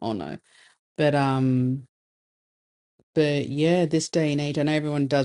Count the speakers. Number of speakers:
1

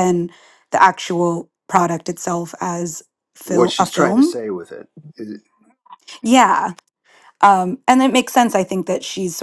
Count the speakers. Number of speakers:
2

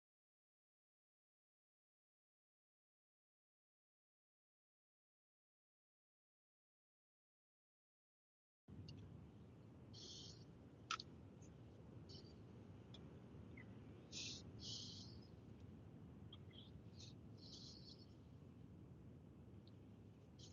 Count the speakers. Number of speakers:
0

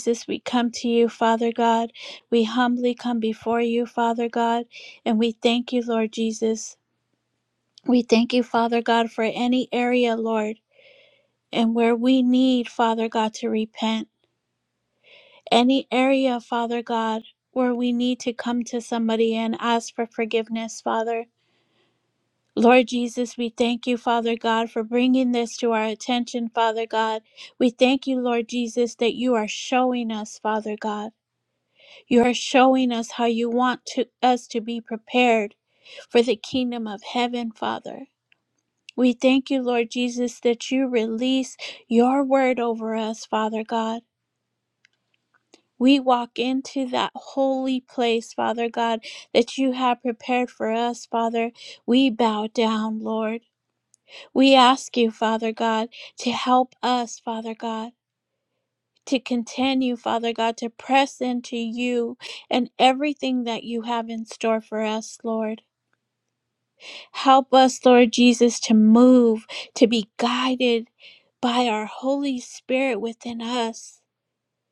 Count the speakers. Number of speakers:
1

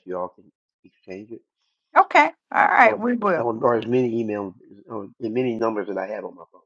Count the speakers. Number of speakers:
2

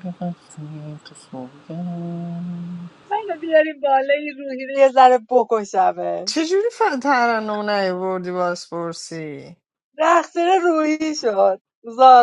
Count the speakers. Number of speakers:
3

